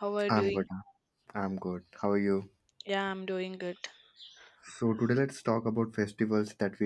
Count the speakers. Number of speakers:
2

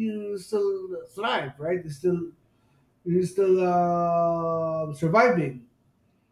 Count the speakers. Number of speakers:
1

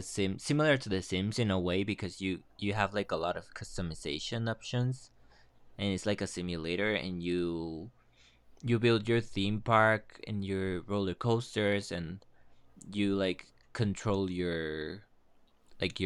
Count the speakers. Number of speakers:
1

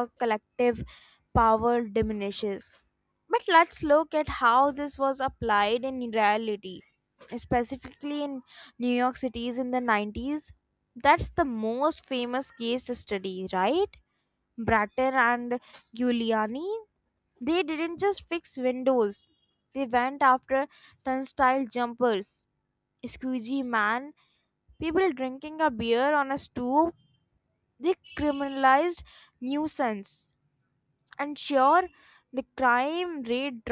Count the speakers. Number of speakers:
1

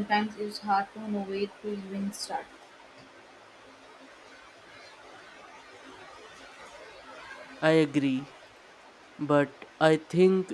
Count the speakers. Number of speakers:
2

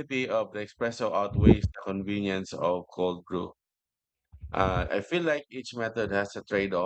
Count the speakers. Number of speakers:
1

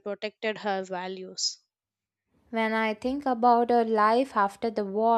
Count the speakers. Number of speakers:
2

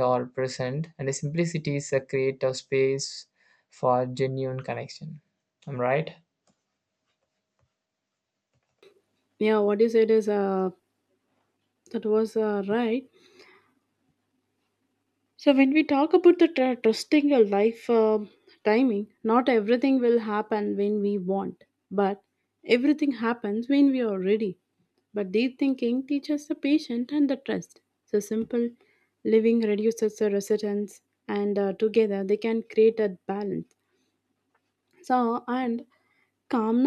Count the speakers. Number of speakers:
2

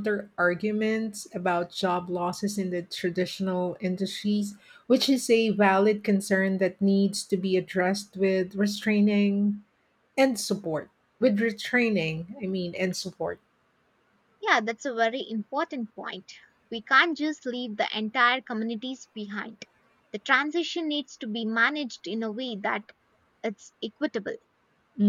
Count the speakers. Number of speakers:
2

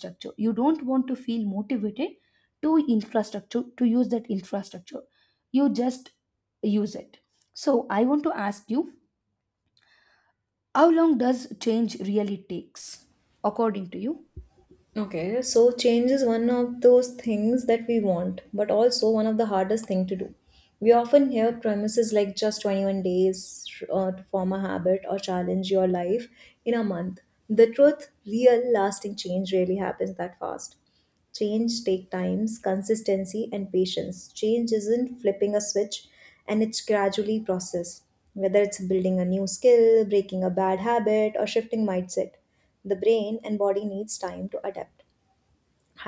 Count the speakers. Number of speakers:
2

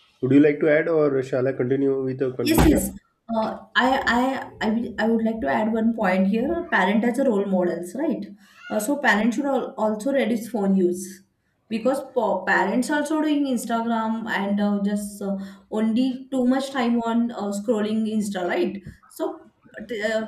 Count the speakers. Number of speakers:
2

